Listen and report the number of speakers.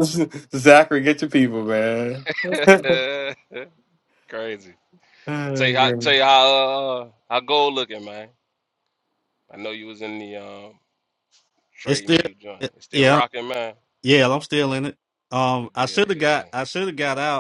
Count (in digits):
3